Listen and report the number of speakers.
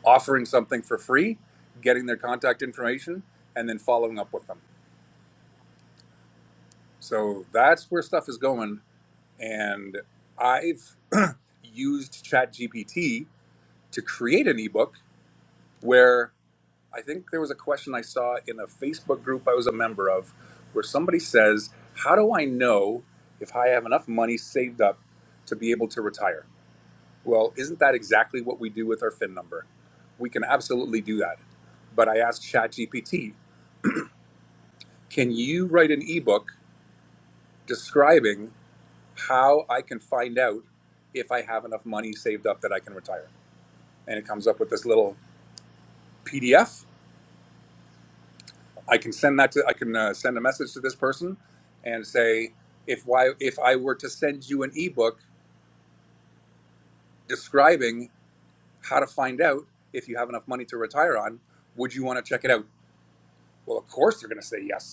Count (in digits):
1